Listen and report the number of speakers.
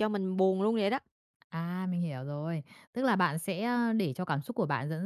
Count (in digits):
2